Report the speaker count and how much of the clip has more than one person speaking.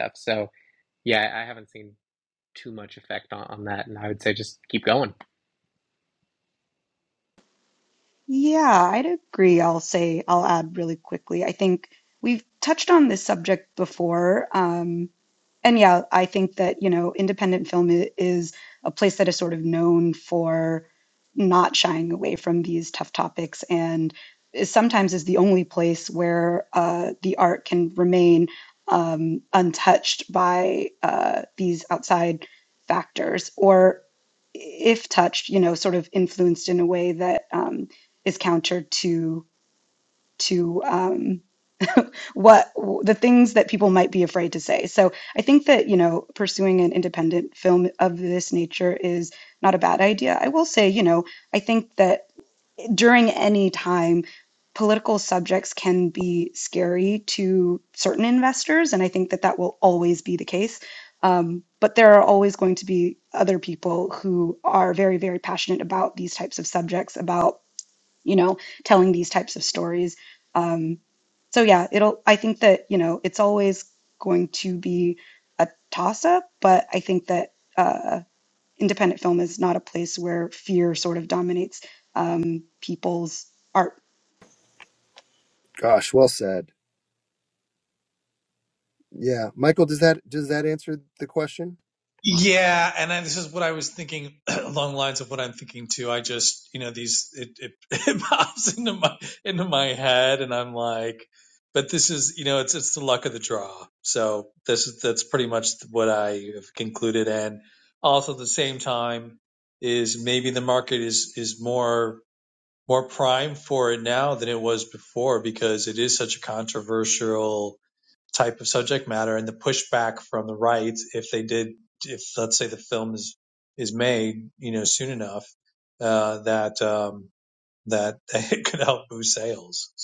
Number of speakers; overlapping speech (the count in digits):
4, no overlap